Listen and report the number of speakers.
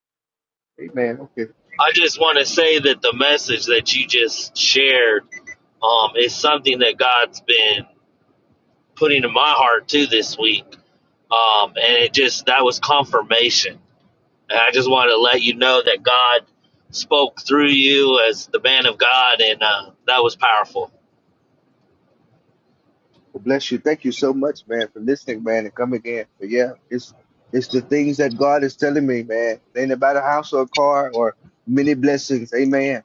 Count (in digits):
2